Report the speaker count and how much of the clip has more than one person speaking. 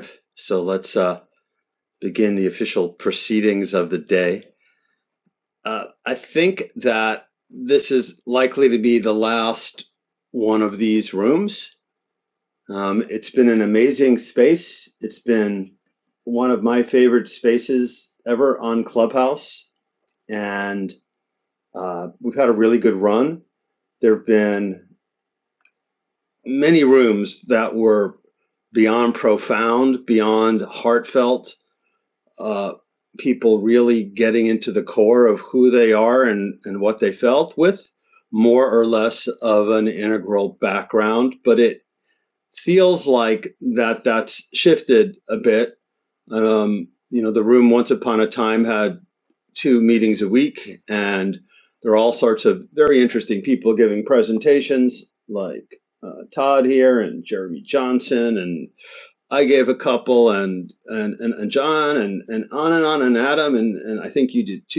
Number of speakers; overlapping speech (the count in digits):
1, no overlap